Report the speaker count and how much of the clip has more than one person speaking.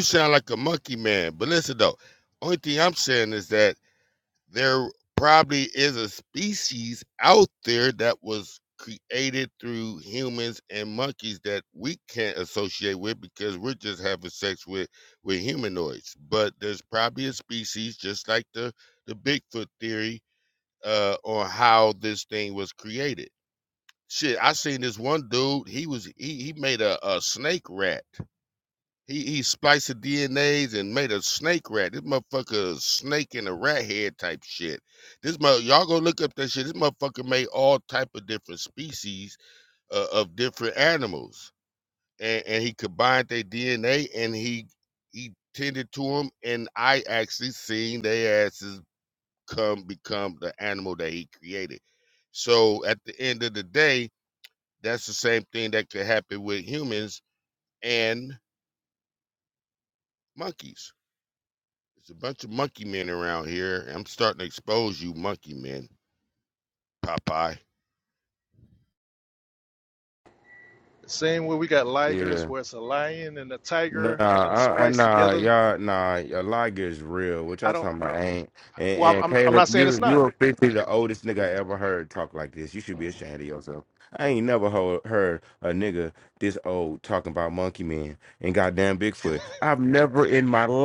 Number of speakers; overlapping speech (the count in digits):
3, about 4%